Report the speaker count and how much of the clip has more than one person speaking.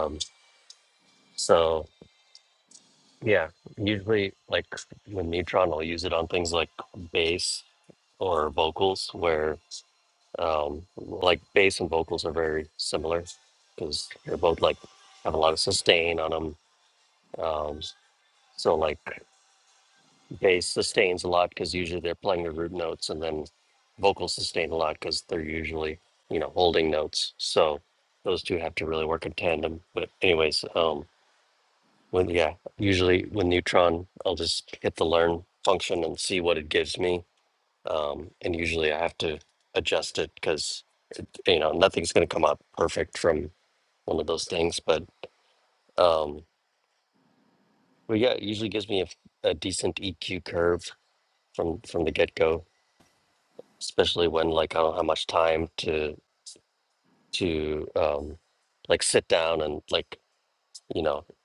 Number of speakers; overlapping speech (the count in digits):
1, no overlap